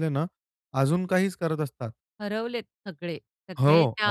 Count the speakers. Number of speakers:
2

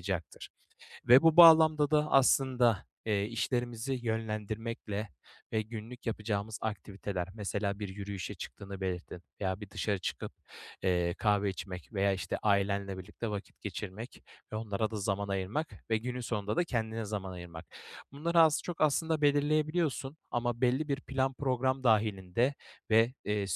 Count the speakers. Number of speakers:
1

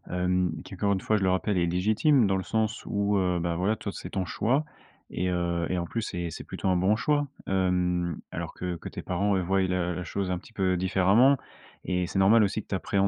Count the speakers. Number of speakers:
1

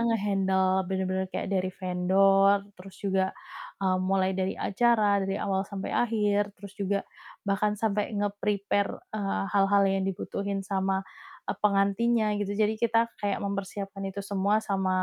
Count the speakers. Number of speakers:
1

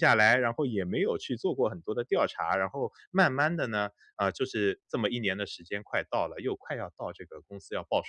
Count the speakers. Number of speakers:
1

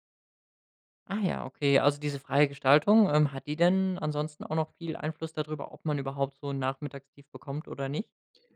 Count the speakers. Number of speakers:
1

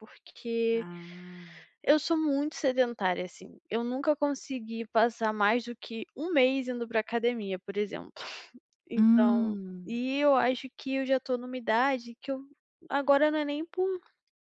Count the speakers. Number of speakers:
2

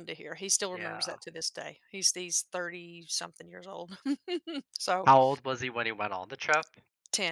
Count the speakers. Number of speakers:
2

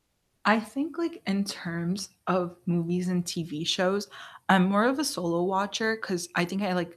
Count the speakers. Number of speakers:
1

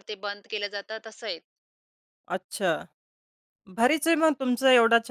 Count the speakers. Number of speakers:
2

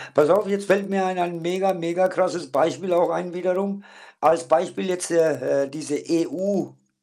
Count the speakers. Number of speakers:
1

